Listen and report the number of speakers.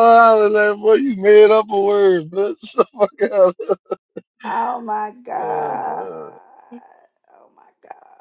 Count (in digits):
2